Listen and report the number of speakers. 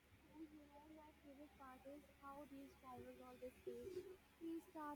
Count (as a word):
zero